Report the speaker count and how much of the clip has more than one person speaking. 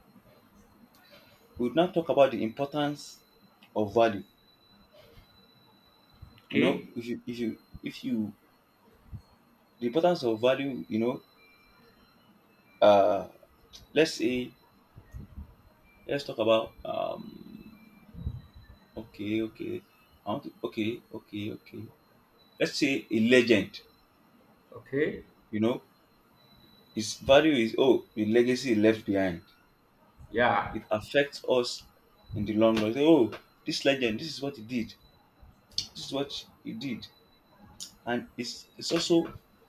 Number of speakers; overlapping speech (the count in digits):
2, about 1%